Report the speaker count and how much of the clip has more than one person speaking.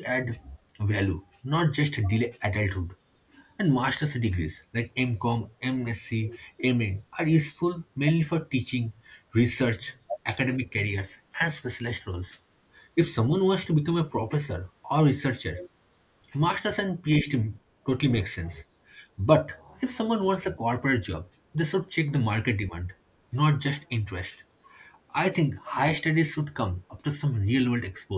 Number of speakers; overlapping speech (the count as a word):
one, no overlap